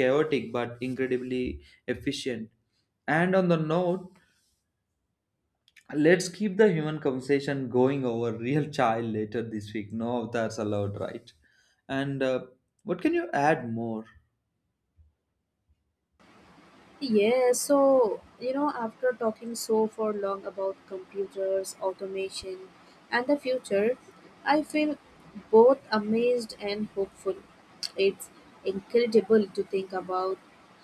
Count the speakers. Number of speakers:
2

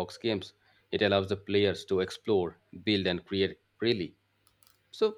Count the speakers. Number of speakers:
1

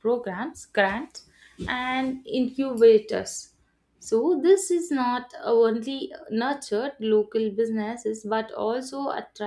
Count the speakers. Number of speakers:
1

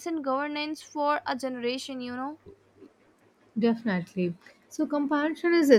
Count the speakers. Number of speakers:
2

